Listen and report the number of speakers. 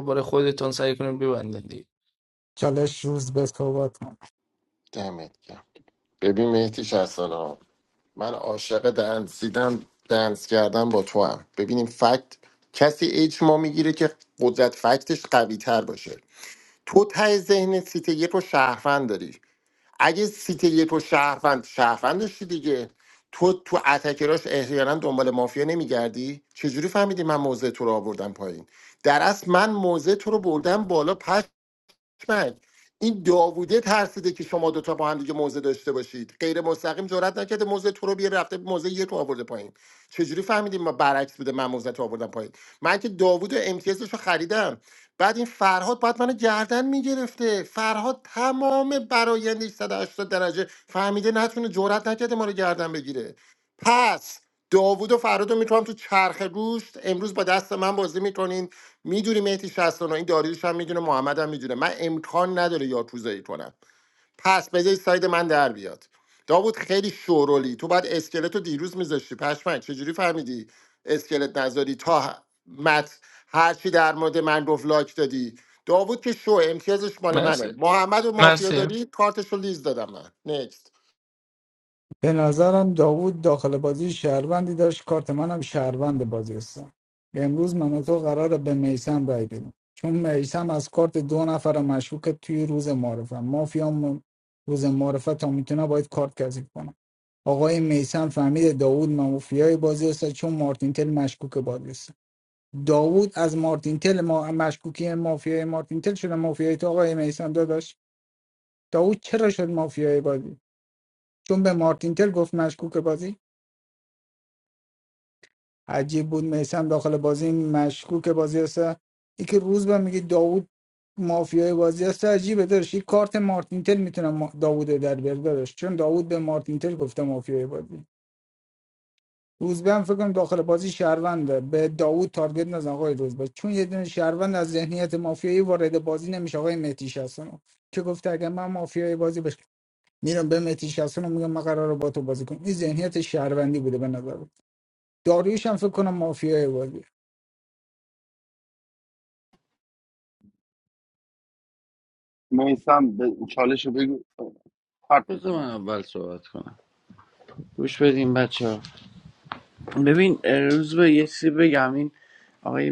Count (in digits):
5